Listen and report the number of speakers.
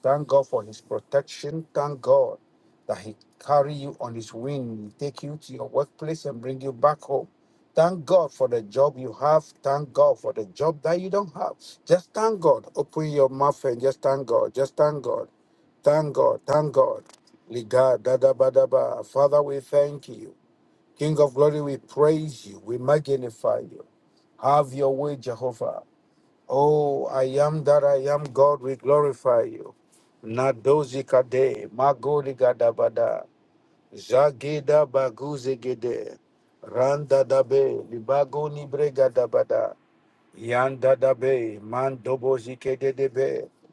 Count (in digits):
1